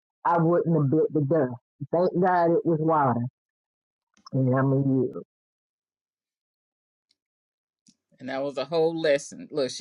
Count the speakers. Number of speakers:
2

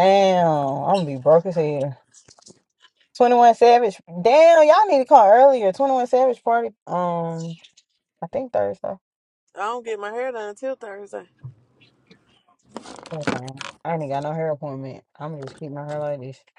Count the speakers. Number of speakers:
2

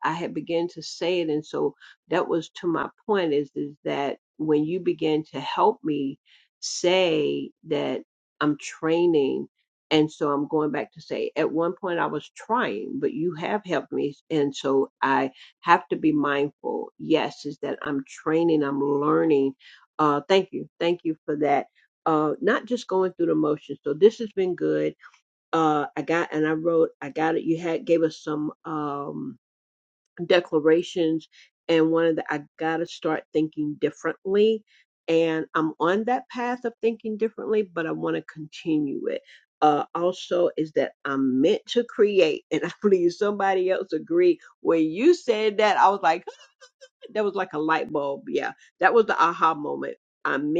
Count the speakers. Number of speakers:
1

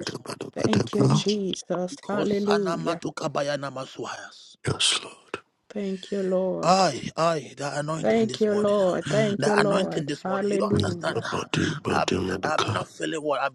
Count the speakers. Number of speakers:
3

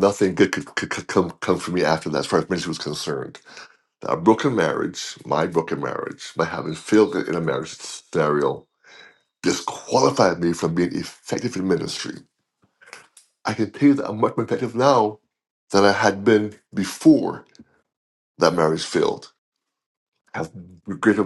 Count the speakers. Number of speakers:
1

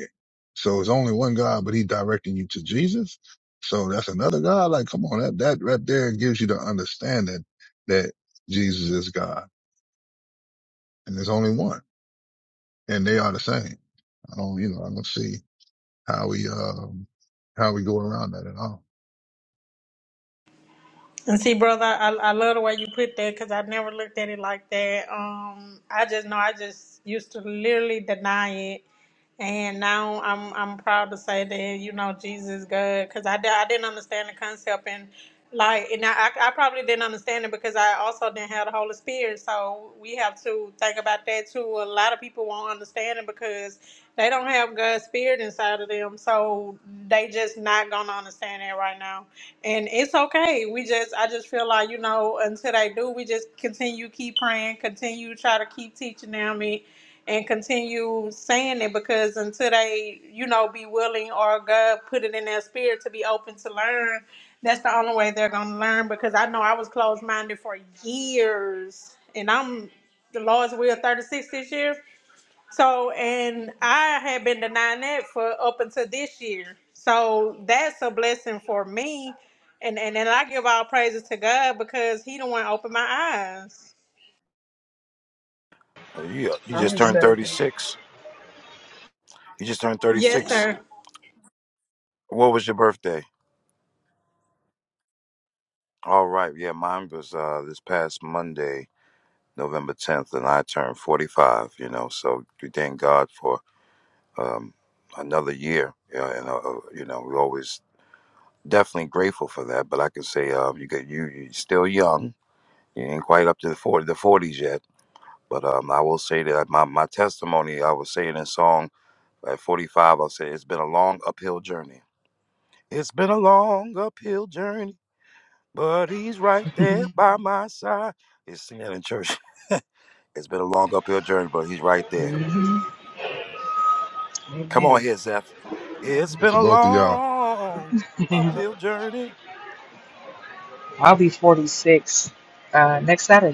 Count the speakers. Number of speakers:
4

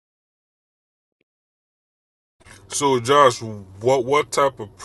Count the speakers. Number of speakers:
1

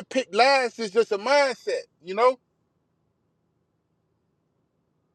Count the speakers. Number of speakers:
1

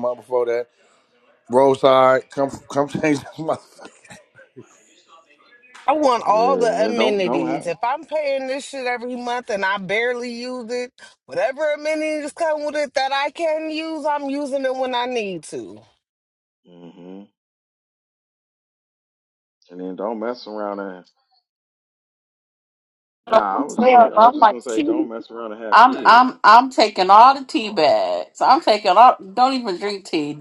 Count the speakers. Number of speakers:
4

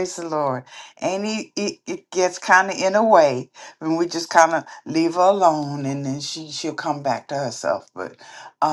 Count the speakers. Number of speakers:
1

